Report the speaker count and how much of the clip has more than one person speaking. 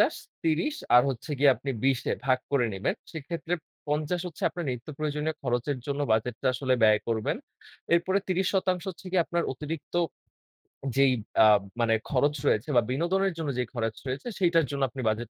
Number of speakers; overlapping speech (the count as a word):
one, no overlap